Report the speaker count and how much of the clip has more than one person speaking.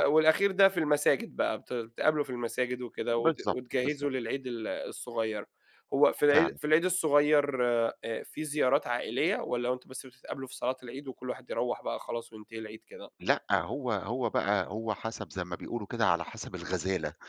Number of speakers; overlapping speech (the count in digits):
2, about 7%